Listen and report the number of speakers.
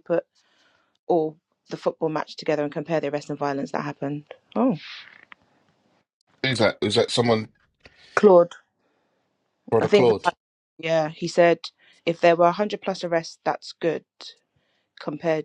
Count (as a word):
two